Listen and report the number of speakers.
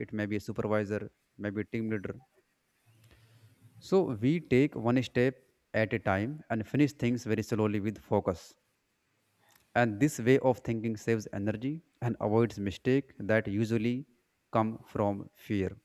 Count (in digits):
1